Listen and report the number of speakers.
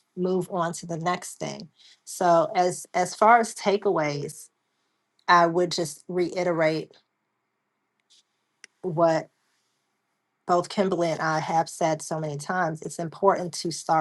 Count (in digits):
1